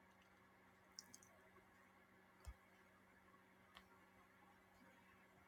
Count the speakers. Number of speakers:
0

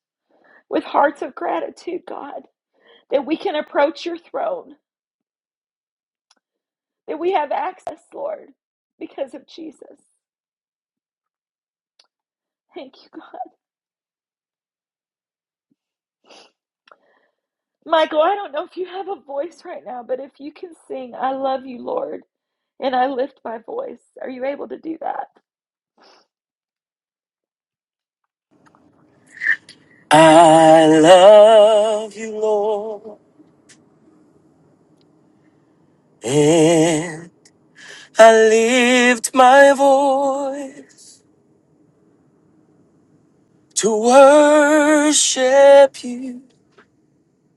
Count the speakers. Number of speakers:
2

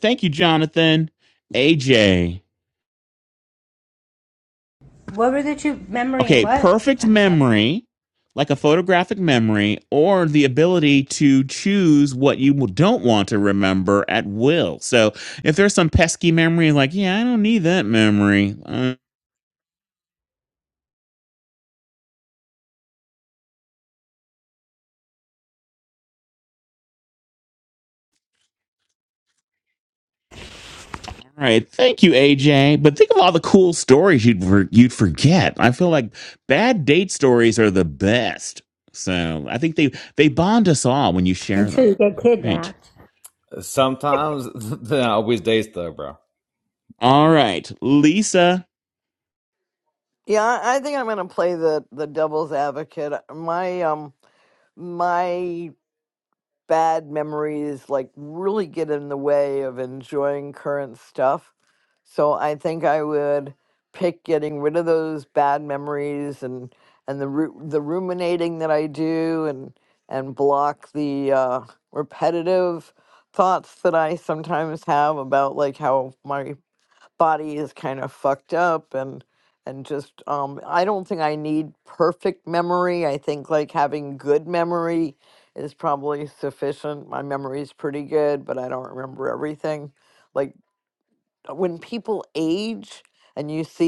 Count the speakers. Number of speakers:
4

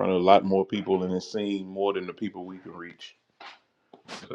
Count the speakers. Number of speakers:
1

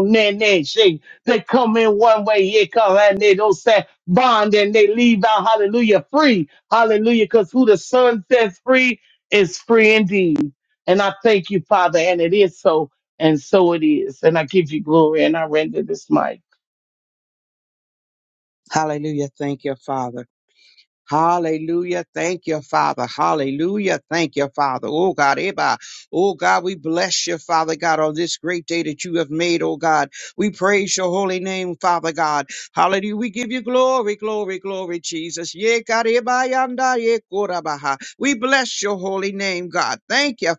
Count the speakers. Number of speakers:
2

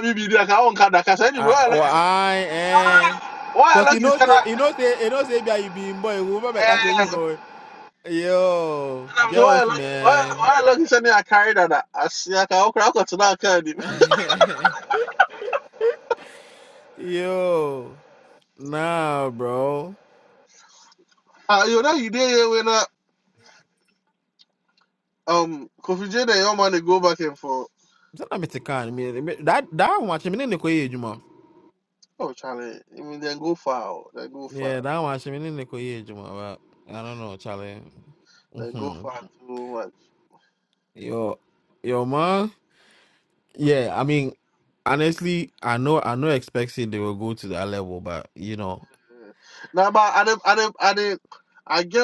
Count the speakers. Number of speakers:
2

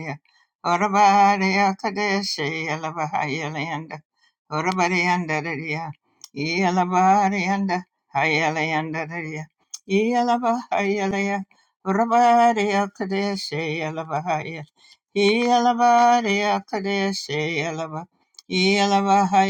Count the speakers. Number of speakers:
1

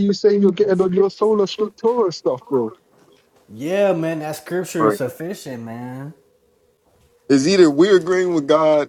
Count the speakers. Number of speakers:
3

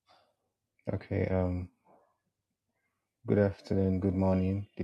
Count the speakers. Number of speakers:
1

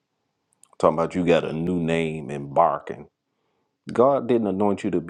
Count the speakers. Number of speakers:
1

